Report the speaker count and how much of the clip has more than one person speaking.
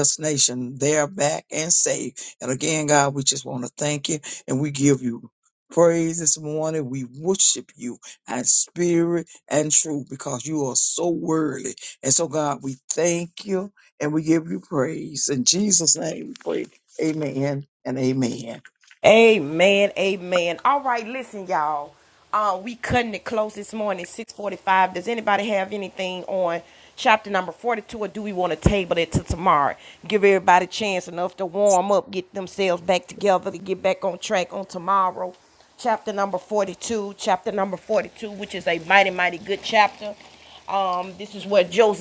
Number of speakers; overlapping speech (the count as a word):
two, no overlap